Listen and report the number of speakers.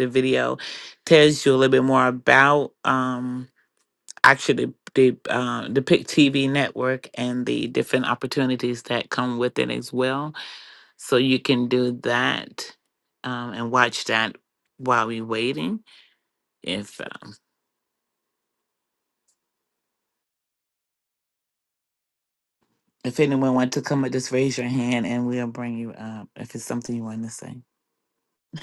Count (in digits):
1